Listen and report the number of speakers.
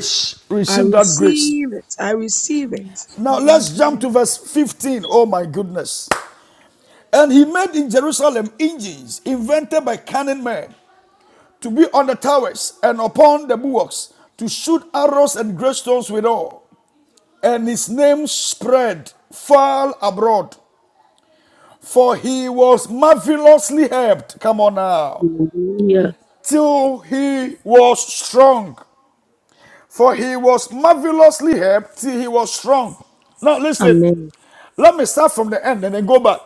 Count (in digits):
3